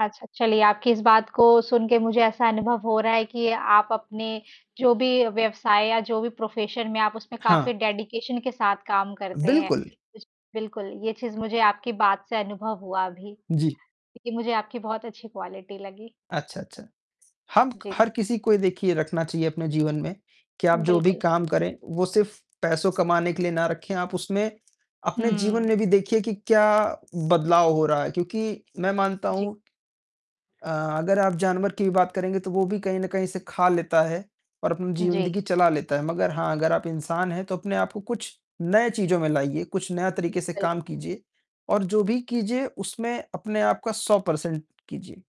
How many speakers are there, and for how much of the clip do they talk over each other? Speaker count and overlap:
2, about 5%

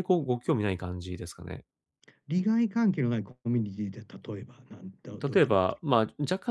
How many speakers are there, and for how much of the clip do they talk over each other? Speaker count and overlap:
2, about 9%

